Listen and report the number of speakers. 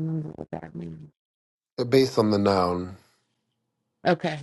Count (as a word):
two